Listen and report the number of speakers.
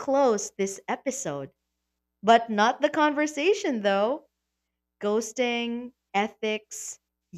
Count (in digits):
1